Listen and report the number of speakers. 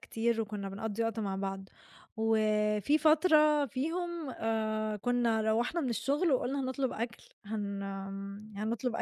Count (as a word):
one